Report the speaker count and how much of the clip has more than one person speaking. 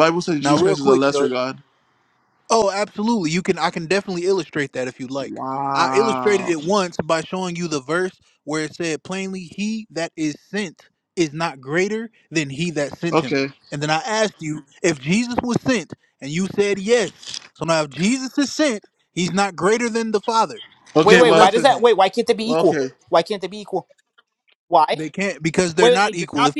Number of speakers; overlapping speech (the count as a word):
three, about 13%